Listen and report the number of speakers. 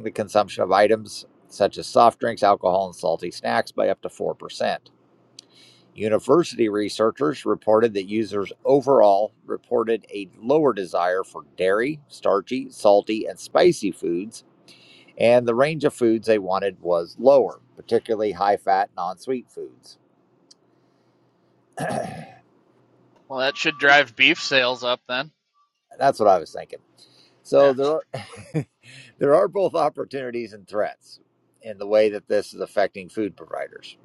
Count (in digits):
2